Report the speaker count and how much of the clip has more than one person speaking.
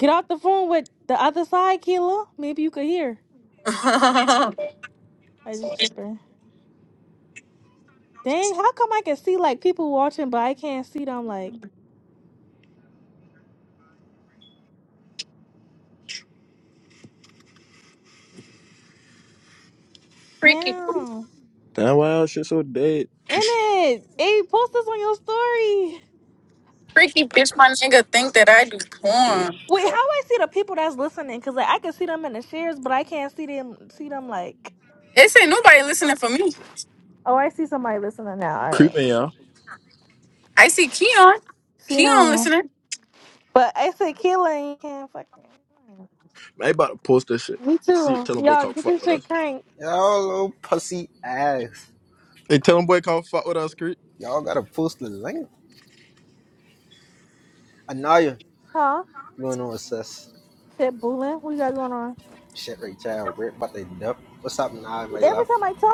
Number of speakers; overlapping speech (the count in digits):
4, about 4%